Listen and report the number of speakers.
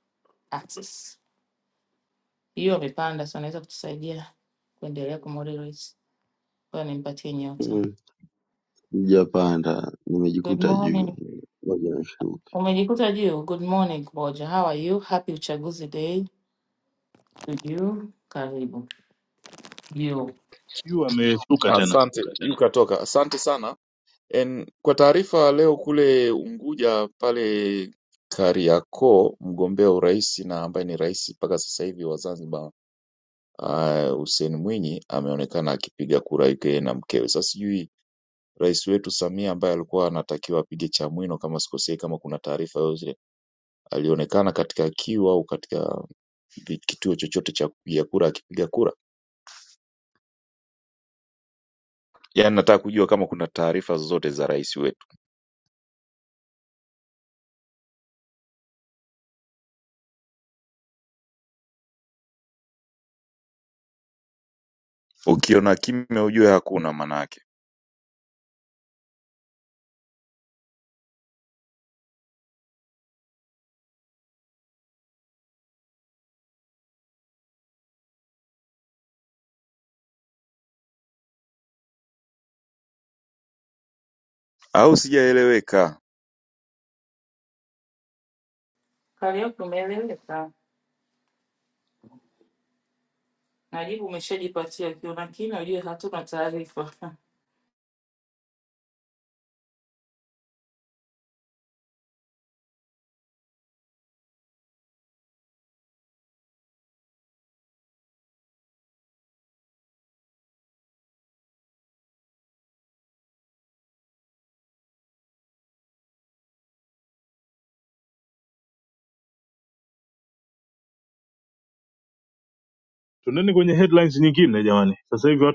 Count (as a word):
four